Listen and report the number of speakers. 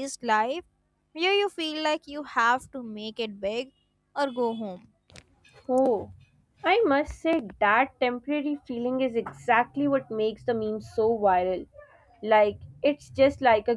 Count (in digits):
2